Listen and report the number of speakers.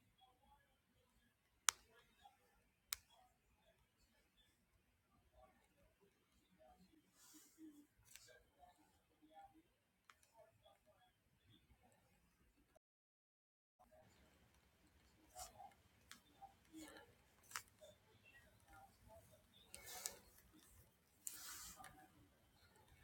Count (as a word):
zero